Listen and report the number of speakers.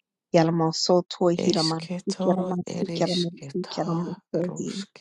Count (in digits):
2